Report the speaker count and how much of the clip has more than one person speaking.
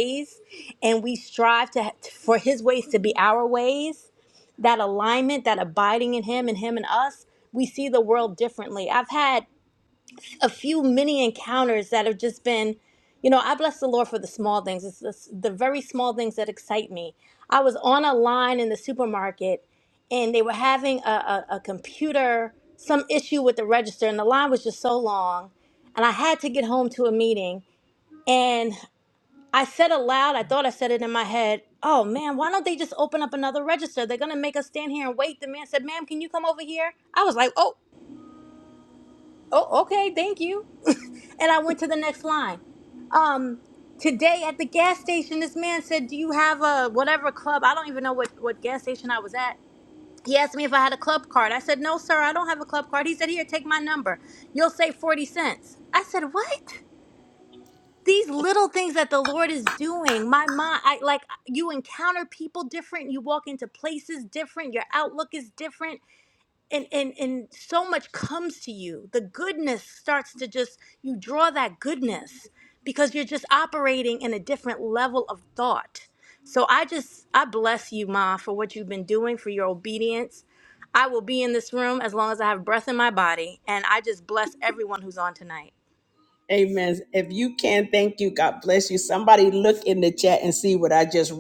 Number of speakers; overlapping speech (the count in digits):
2, no overlap